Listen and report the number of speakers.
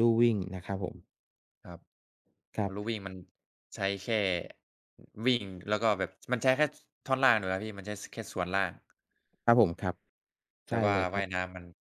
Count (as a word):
two